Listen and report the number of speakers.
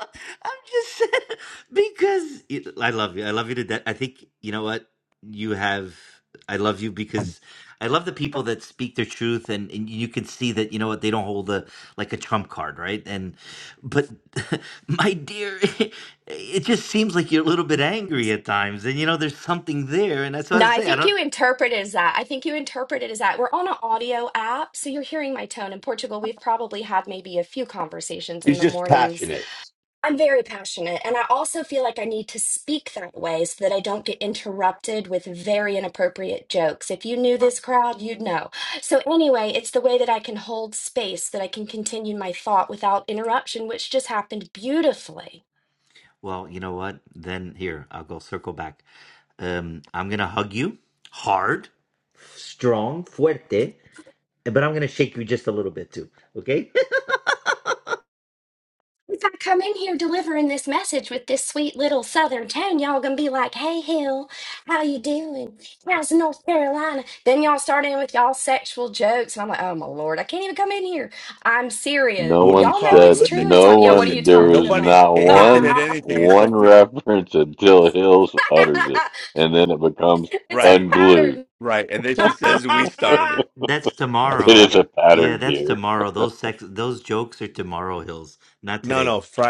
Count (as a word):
four